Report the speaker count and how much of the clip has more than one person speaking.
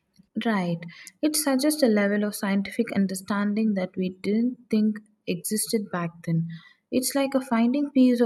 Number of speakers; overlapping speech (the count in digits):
1, no overlap